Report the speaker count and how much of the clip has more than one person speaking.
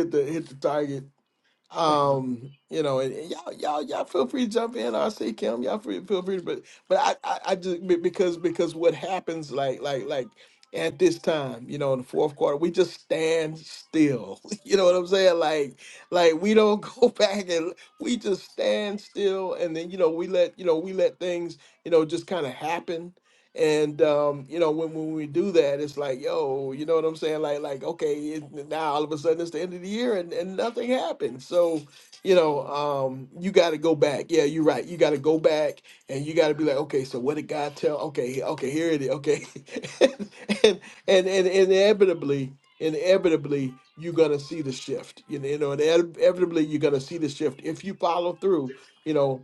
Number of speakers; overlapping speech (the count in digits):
1, no overlap